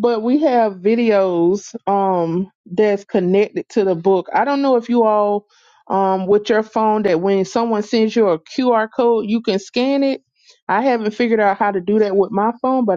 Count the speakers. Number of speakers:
1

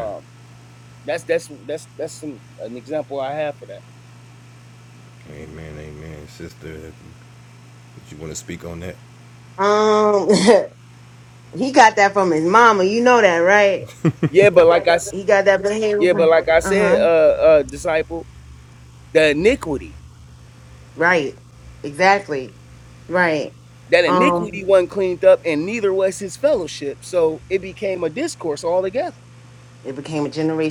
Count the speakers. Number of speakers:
3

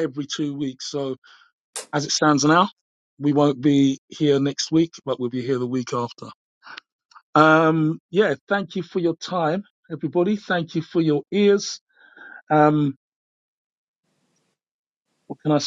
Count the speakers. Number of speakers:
1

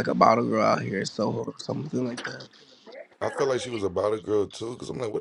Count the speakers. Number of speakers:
2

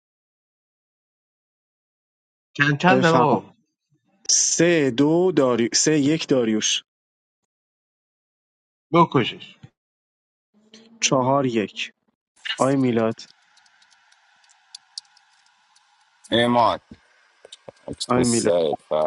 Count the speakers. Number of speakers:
3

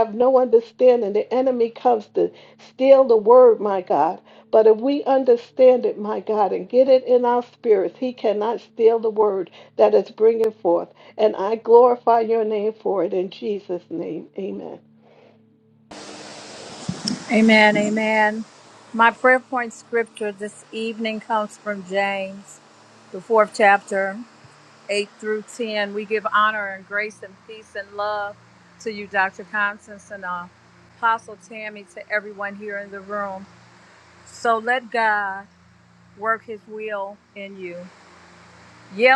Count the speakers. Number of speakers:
2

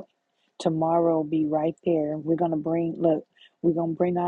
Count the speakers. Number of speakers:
1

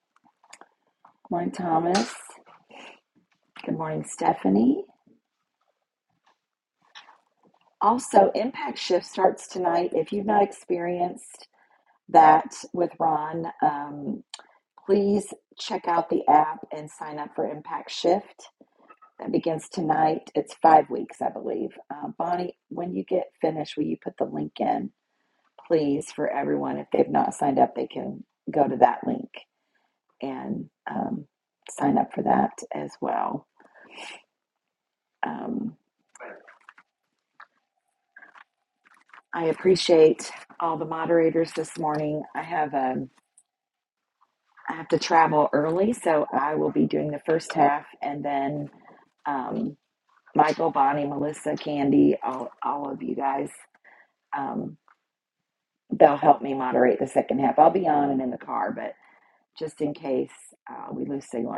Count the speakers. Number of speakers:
1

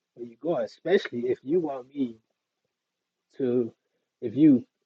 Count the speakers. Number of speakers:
1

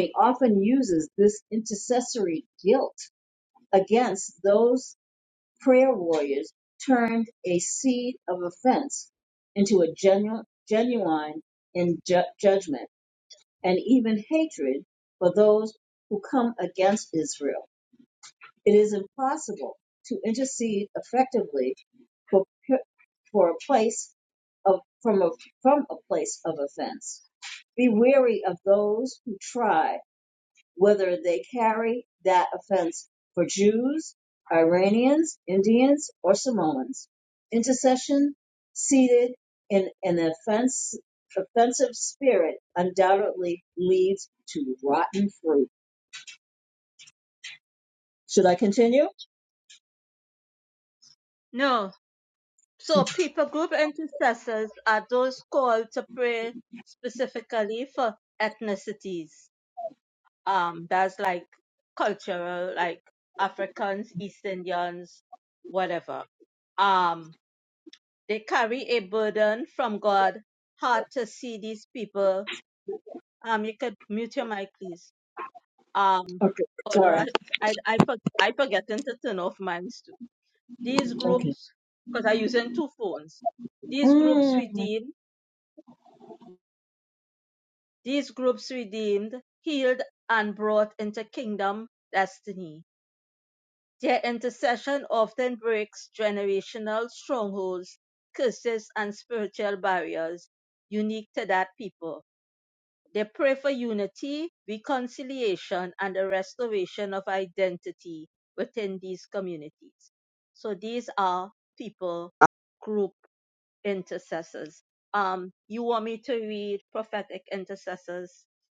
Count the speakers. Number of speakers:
2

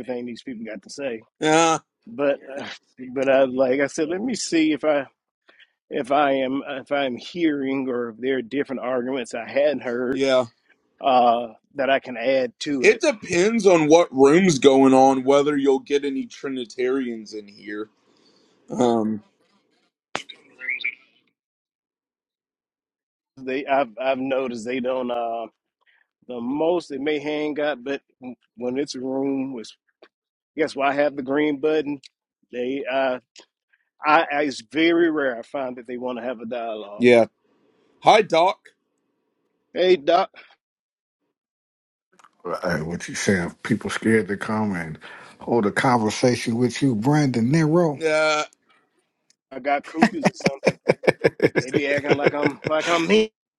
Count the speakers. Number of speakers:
3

